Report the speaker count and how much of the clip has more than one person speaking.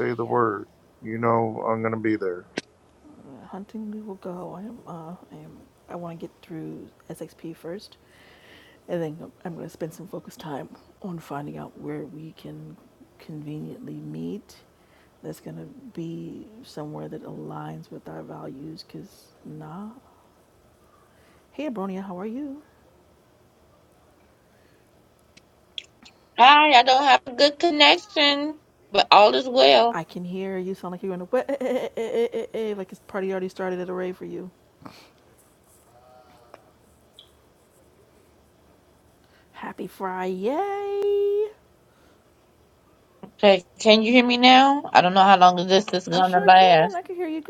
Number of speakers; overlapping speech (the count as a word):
three, about 2%